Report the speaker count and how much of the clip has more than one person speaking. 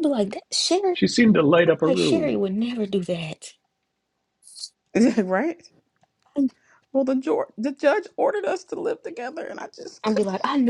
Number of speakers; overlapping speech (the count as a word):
three, about 10%